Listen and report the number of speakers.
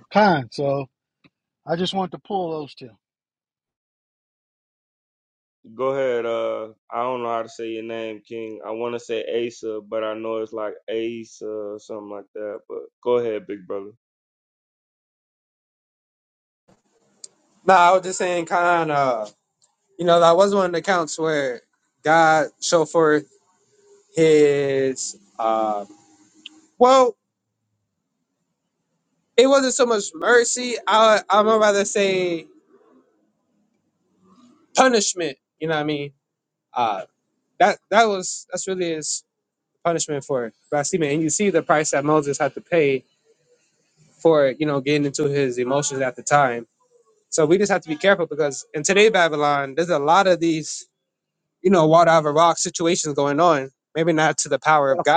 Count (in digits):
3